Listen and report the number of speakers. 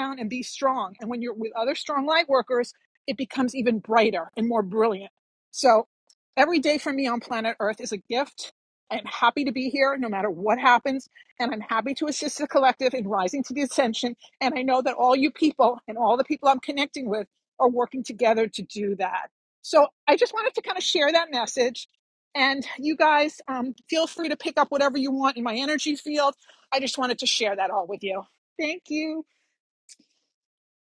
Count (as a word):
one